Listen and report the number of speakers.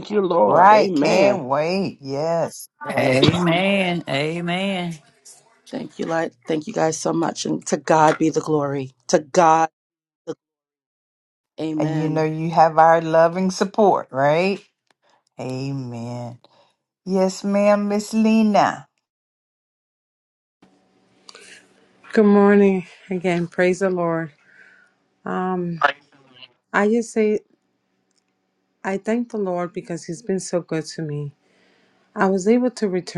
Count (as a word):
five